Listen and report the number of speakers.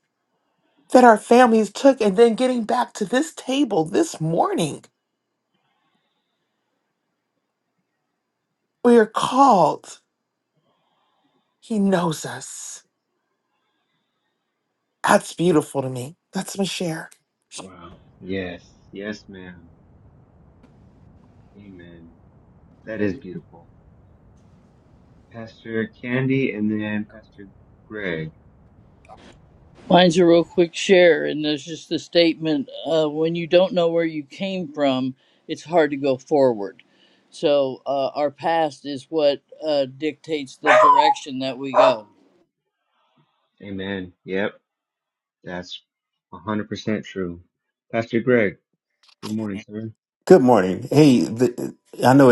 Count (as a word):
four